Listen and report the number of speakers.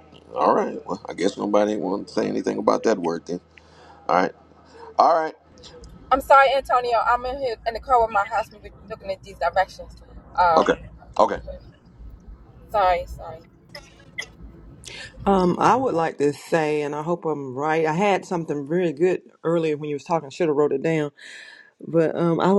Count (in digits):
3